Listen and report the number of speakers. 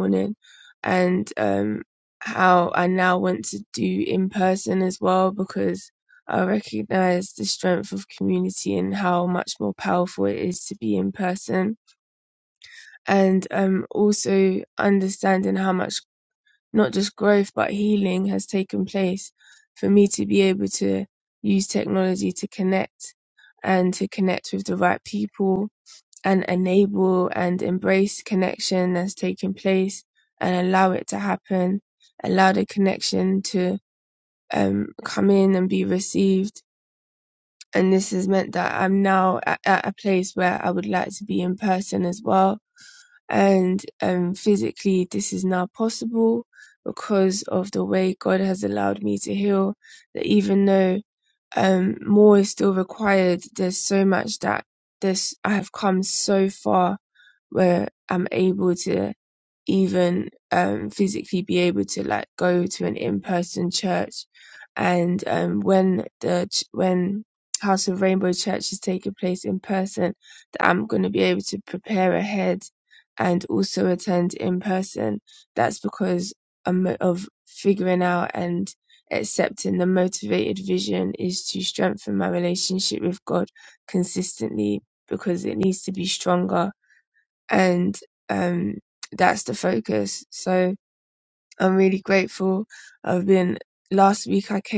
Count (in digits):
1